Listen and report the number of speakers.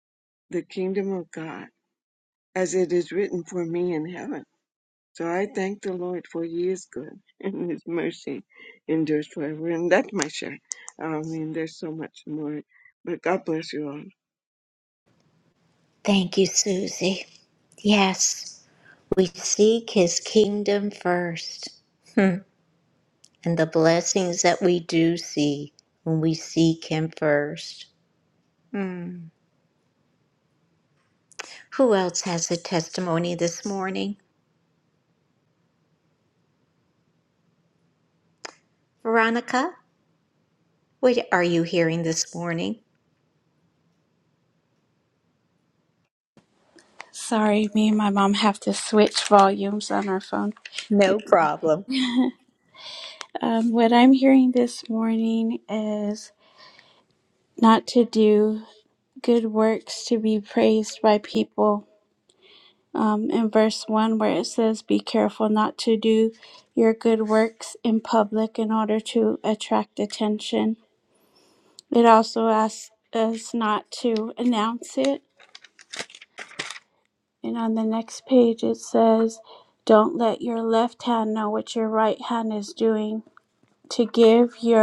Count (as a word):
three